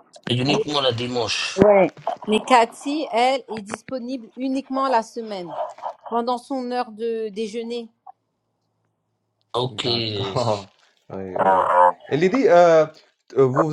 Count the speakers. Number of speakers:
3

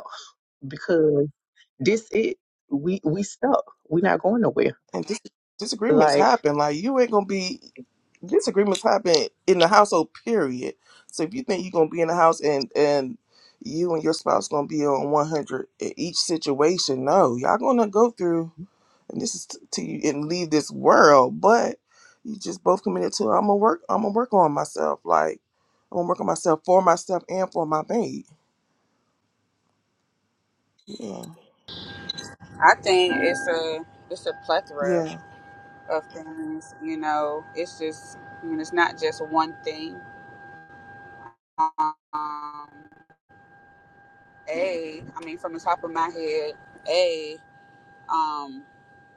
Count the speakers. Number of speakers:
3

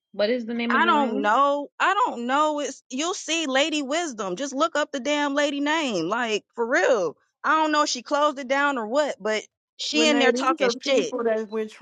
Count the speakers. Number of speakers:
3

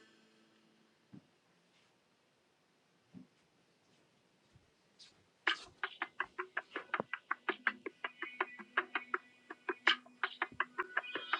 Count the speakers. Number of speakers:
0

